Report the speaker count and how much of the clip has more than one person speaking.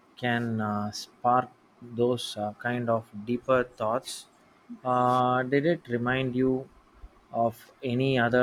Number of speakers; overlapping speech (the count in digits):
1, no overlap